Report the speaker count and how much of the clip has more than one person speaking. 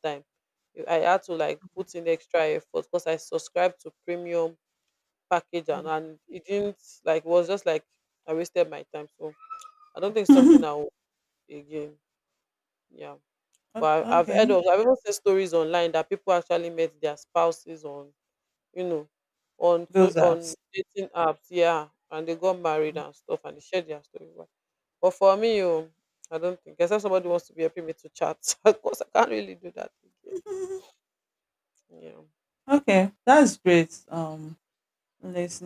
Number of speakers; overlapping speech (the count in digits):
2, about 4%